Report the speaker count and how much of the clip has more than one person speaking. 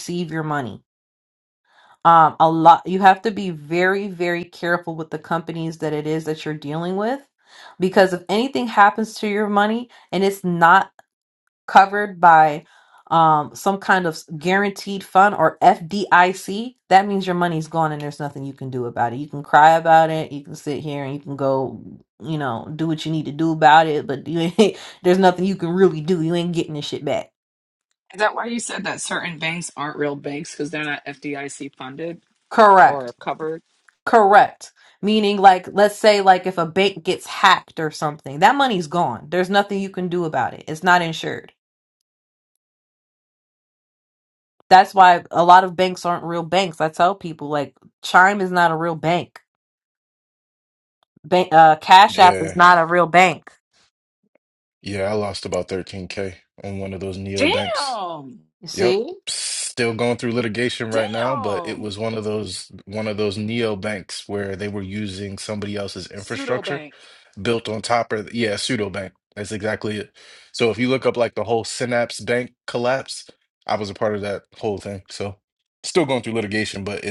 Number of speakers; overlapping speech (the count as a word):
three, about 4%